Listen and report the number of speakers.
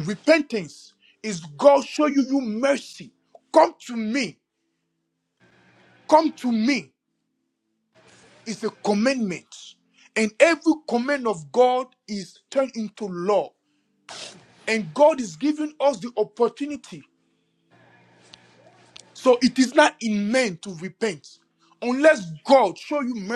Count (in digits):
1